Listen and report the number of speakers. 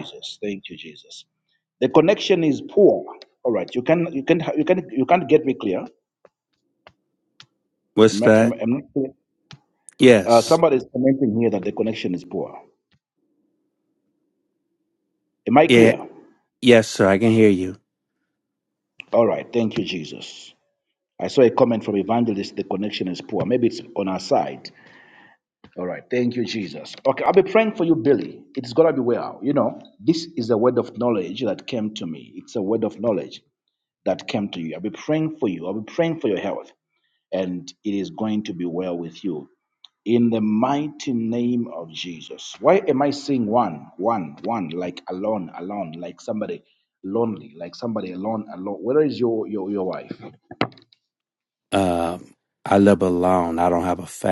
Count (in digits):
2